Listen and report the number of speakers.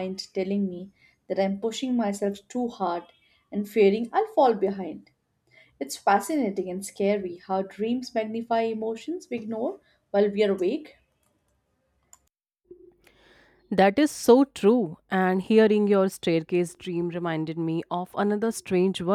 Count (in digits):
2